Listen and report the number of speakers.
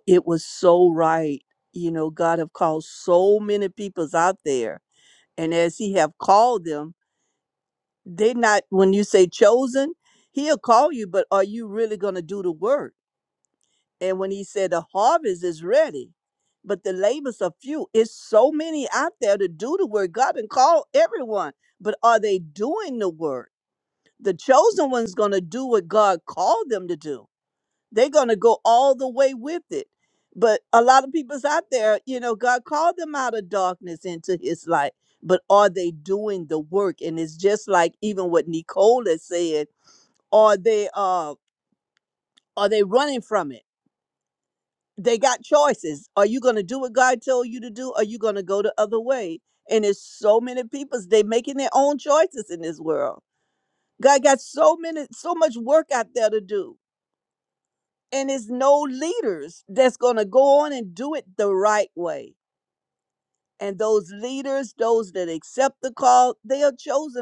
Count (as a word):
one